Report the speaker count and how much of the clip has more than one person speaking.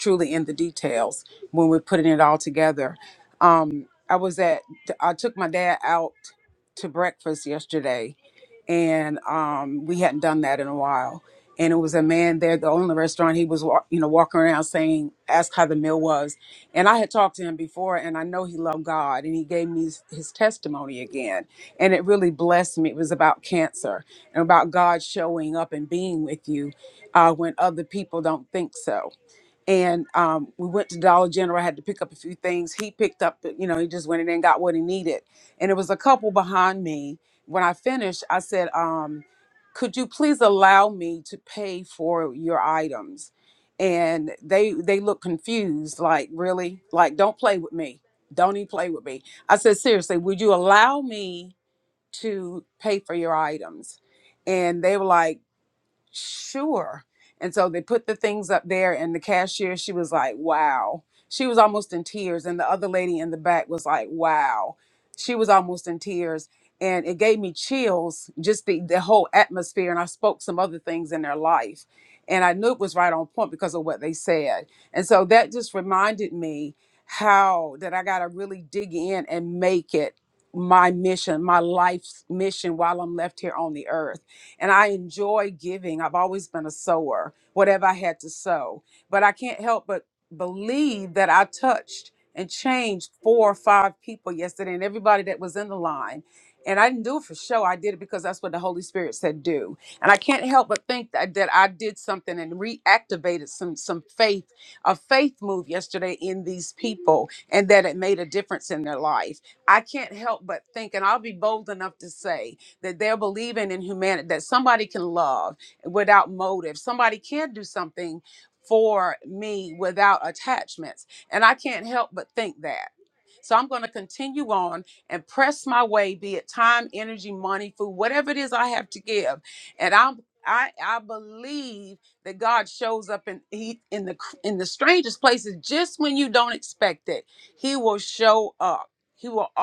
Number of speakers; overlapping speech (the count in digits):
1, no overlap